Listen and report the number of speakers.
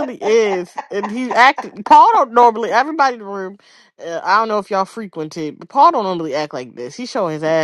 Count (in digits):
1